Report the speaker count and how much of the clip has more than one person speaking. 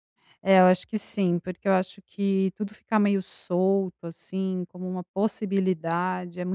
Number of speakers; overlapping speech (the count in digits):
1, no overlap